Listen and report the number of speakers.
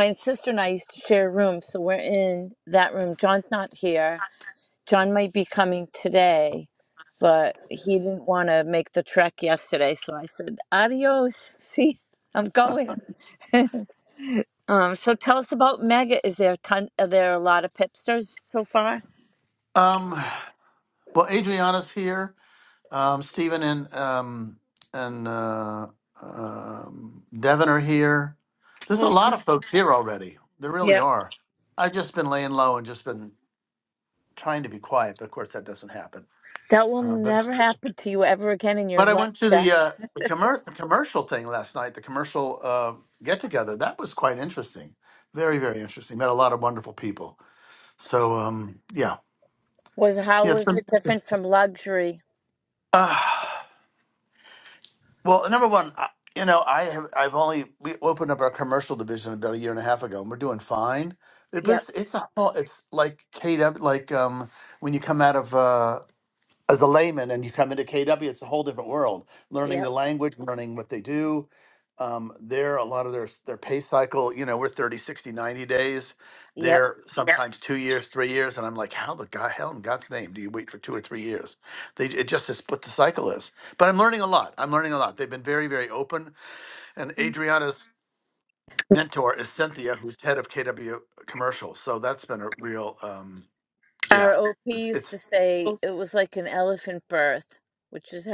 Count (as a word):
two